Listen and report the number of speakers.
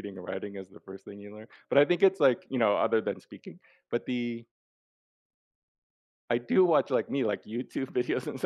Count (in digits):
1